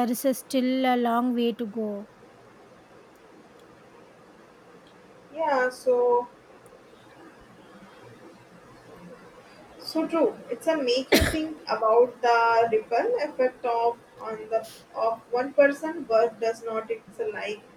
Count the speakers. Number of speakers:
two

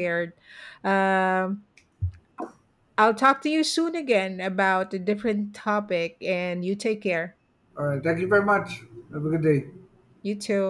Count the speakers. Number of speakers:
two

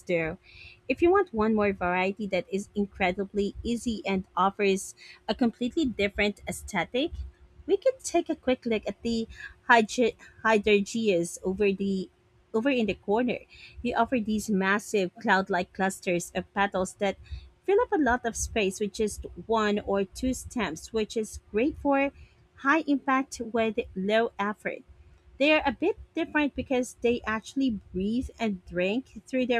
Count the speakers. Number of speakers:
one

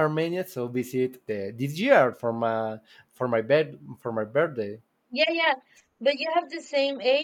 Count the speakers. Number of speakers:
two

